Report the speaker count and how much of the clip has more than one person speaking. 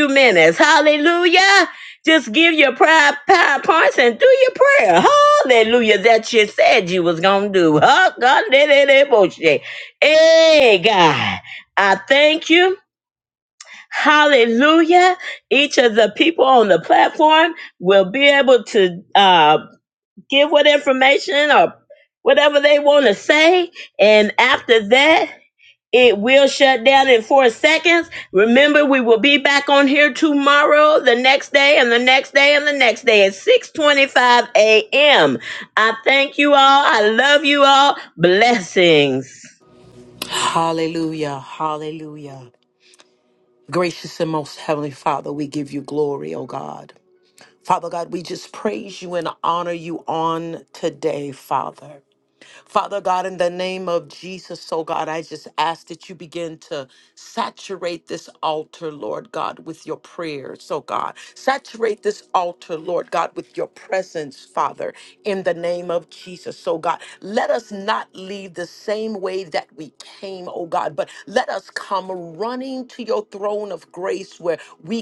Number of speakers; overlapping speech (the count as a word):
two, no overlap